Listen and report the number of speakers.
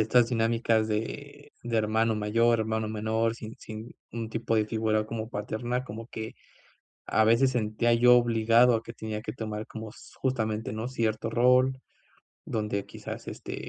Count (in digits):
1